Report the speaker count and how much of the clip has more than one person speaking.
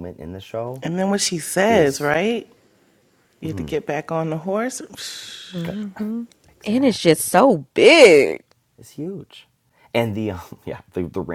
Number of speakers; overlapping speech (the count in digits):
3, about 7%